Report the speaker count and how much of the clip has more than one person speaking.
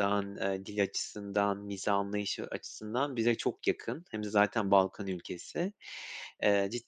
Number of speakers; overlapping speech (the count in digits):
1, no overlap